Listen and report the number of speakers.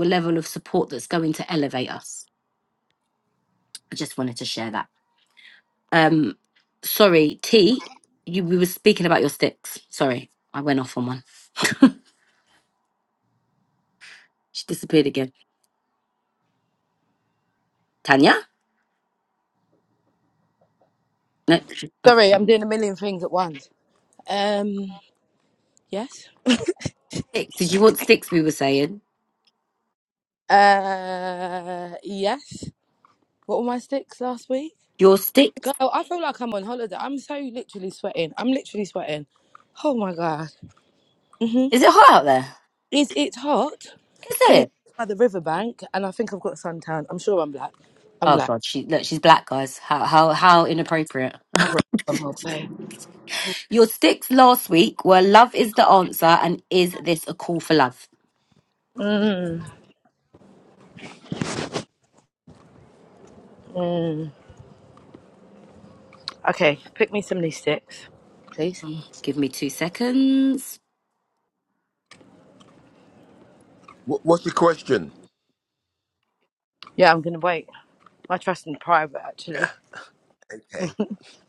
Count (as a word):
three